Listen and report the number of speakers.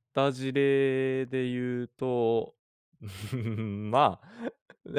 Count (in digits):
1